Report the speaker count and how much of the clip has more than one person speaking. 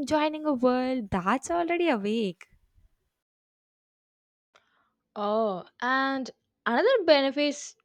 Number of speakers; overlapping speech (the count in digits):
2, no overlap